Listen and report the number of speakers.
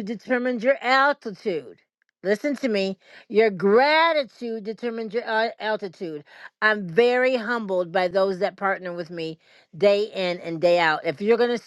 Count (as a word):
one